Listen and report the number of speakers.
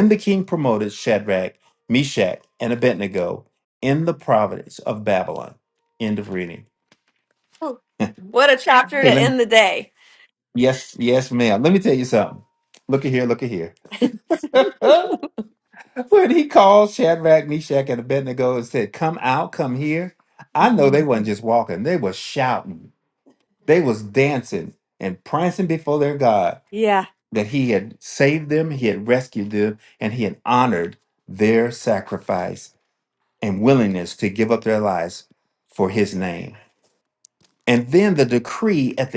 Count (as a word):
two